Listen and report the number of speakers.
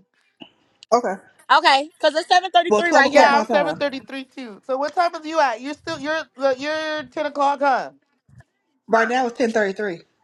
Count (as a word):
three